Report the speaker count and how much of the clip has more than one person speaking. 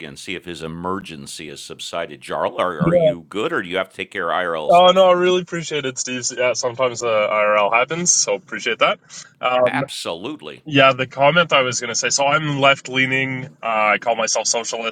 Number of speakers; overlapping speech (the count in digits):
2, about 3%